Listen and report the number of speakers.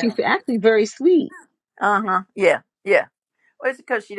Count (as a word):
two